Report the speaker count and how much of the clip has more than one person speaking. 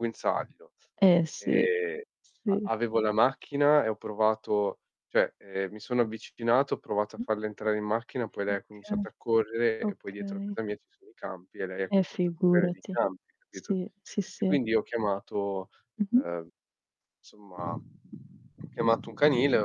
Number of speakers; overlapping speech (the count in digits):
2, about 16%